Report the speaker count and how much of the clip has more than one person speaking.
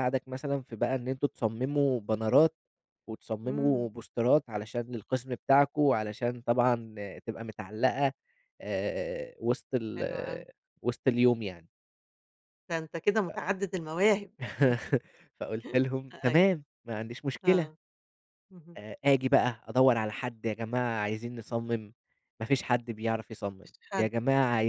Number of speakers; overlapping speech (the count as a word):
two, about 5%